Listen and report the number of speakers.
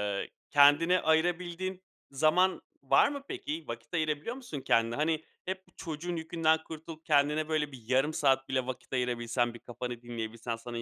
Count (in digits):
1